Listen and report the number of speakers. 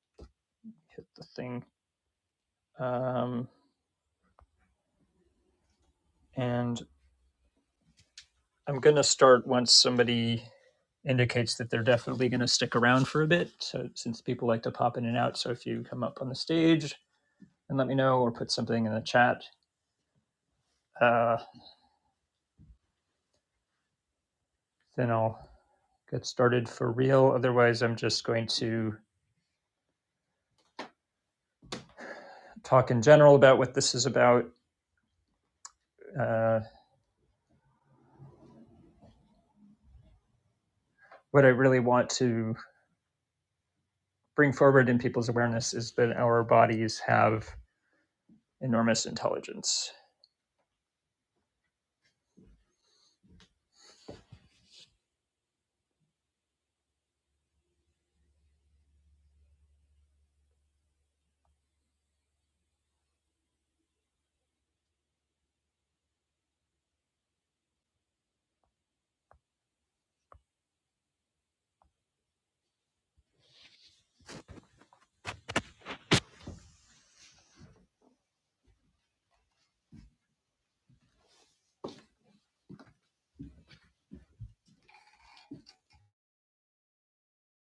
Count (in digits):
1